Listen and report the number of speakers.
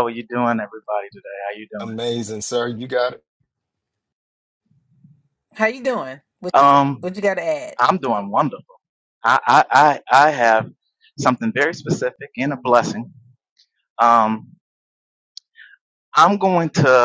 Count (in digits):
3